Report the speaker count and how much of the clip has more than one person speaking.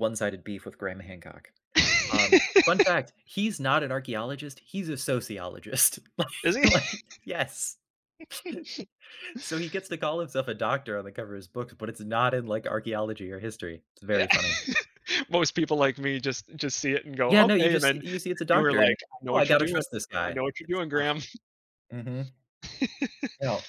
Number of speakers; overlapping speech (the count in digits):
2, about 11%